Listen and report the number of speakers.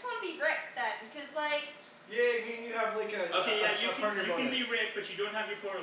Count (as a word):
three